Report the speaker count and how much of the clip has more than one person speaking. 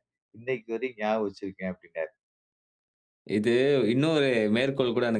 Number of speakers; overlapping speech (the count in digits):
2, no overlap